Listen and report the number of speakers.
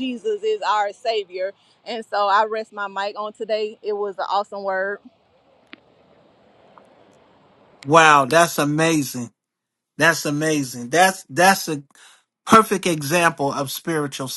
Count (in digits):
2